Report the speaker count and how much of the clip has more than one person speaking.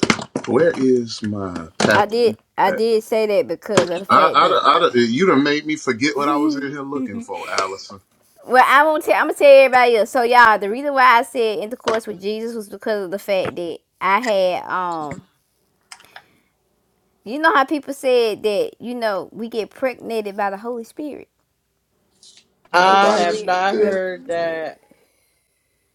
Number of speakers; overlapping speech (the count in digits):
3, about 8%